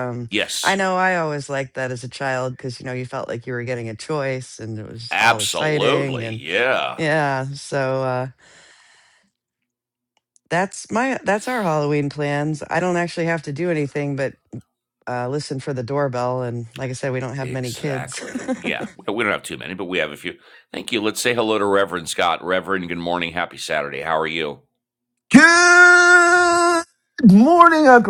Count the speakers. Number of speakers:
three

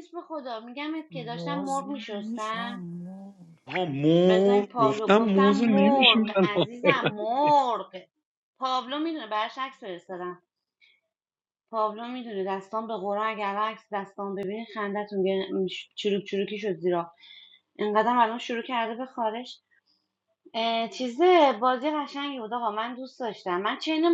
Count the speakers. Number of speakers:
three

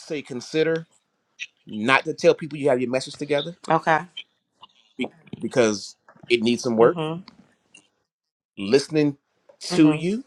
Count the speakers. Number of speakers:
two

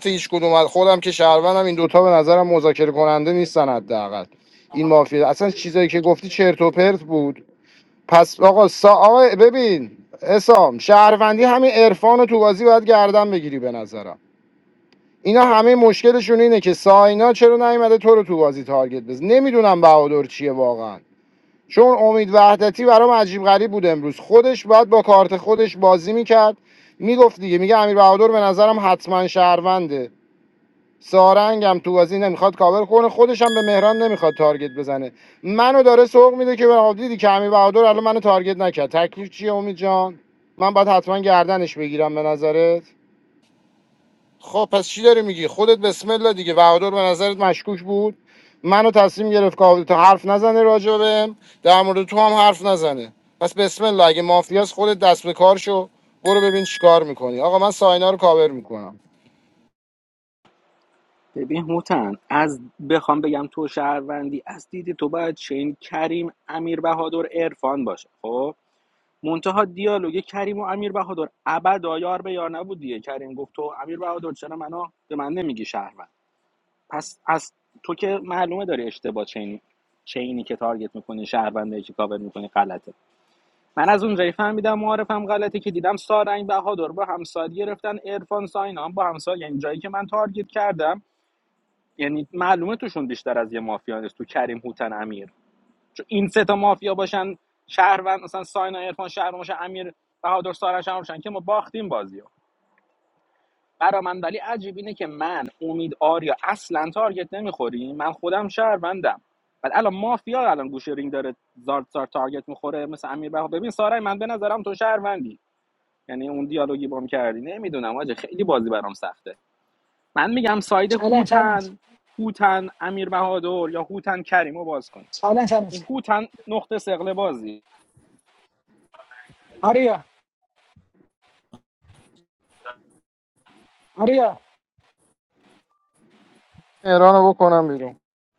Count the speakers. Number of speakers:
three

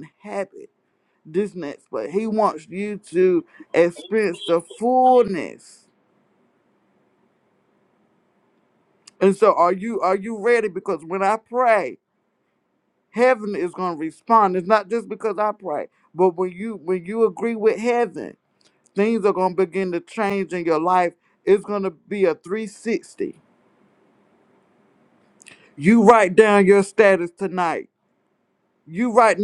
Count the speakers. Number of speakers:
one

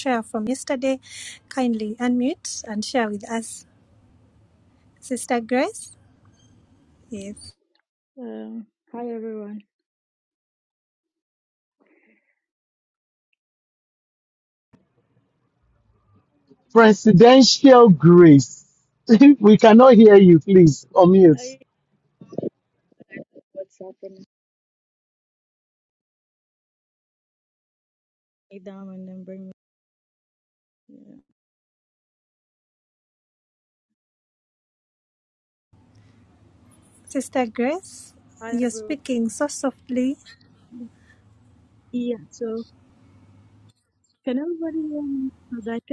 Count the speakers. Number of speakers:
three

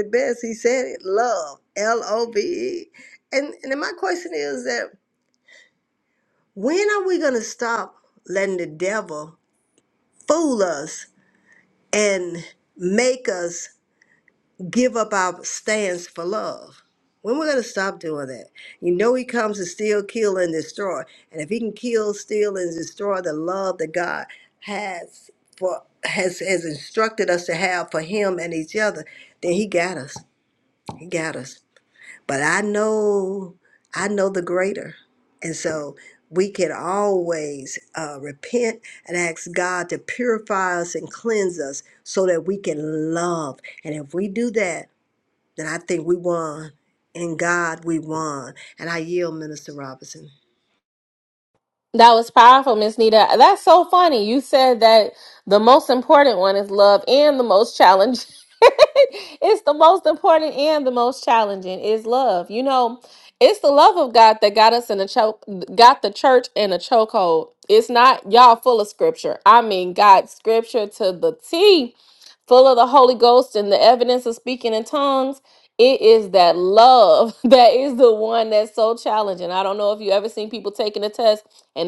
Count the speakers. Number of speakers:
two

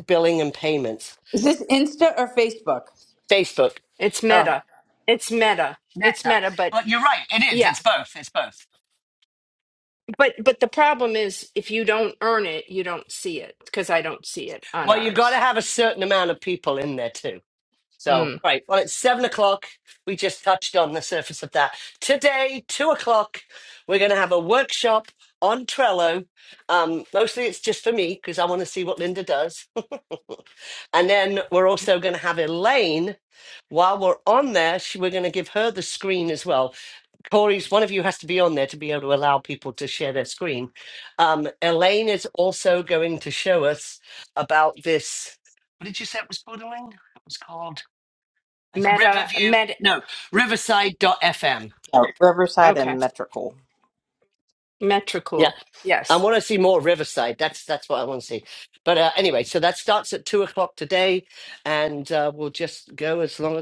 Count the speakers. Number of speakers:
four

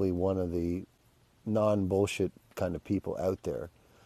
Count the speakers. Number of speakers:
one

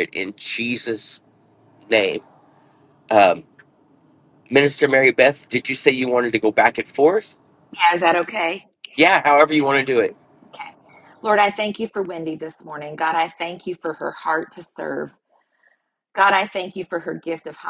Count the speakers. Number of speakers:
two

